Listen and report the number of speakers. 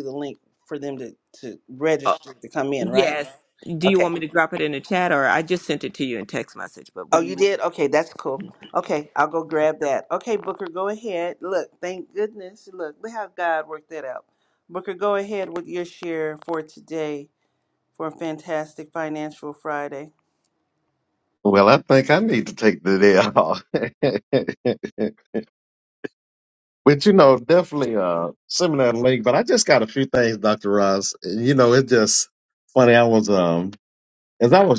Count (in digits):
3